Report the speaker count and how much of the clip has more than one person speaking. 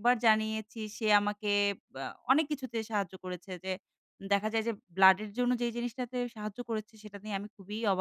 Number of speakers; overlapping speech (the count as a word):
one, no overlap